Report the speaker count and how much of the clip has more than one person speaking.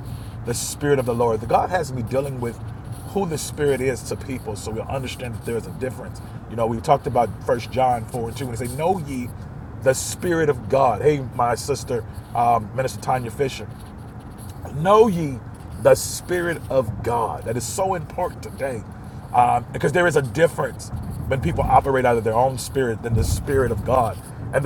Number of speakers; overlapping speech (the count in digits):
1, no overlap